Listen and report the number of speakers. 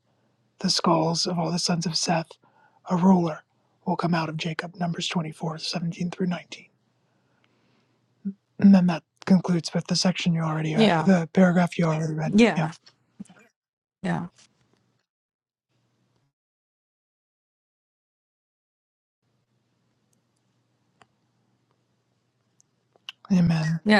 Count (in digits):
2